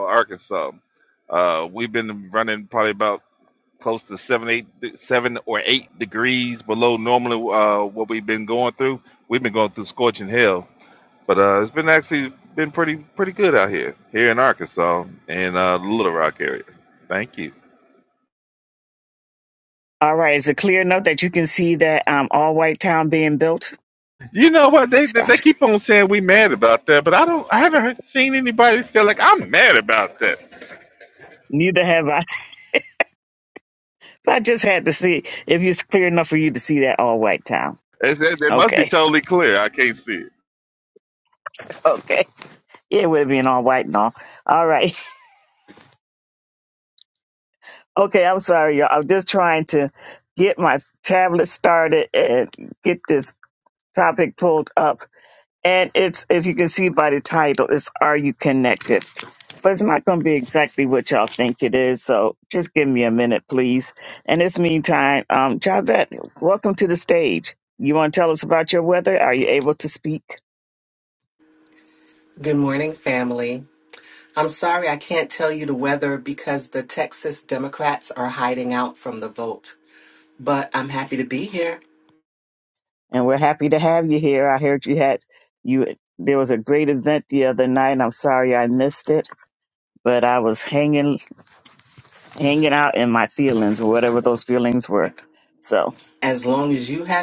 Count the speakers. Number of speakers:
three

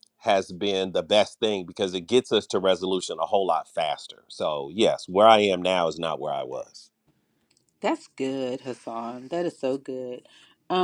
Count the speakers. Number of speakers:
two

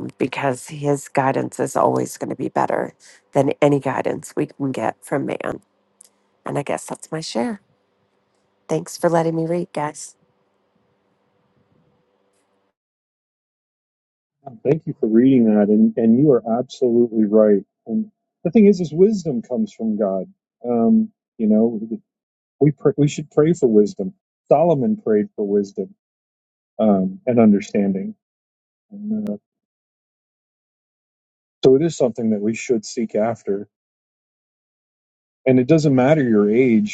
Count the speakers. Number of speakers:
two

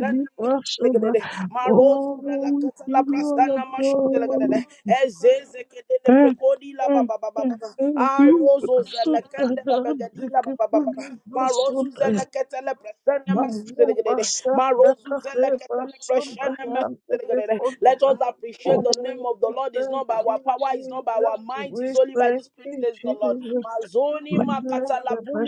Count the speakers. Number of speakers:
two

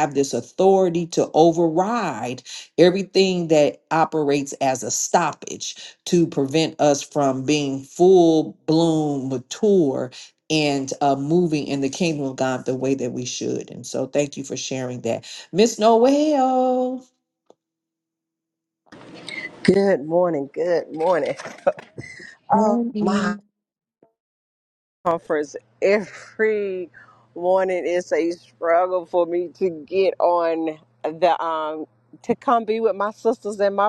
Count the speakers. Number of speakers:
two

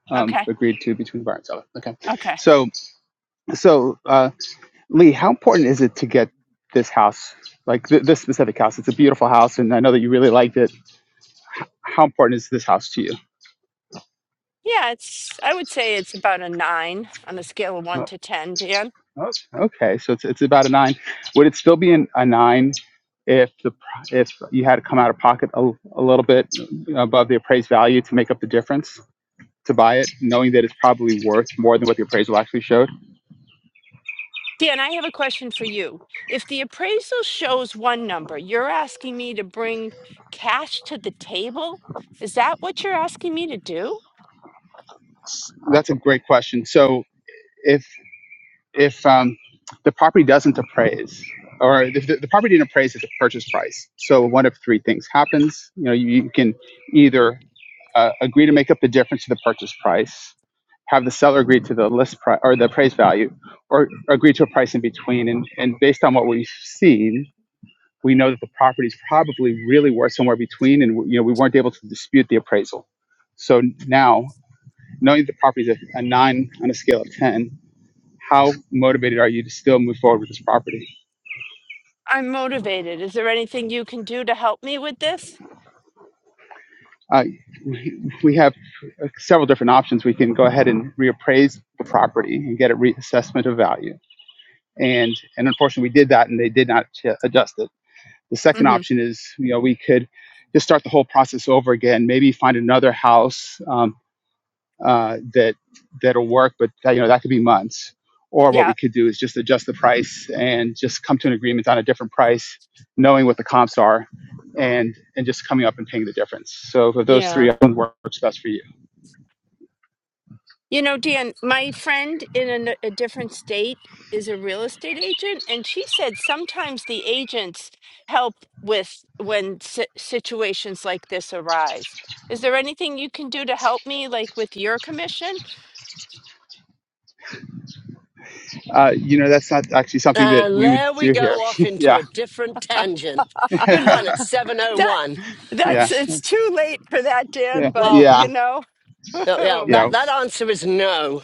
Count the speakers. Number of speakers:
three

